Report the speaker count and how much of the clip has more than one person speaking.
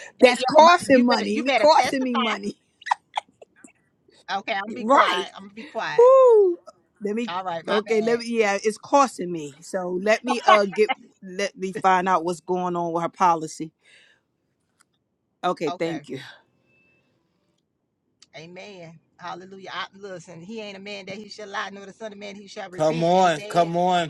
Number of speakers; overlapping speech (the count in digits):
3, about 19%